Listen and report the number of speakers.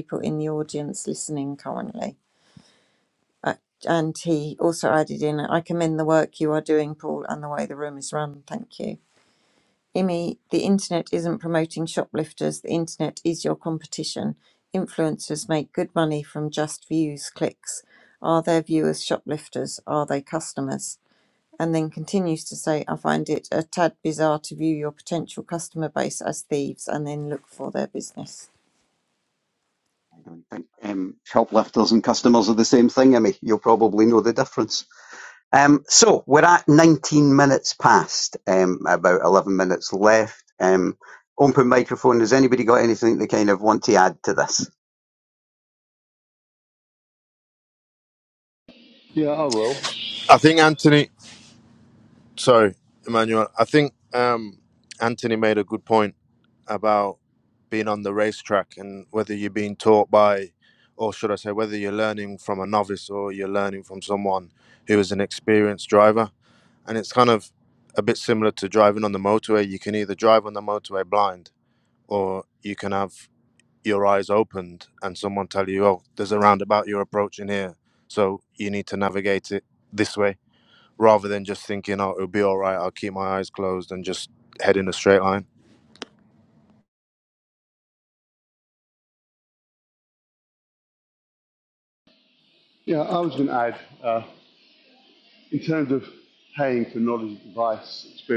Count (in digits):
4